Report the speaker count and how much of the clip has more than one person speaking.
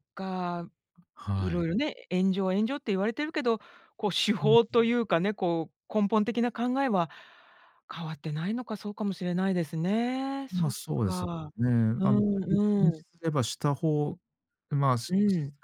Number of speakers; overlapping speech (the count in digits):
2, about 15%